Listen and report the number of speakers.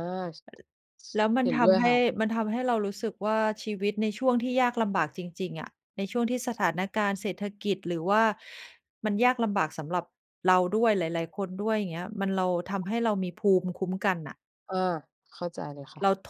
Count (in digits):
2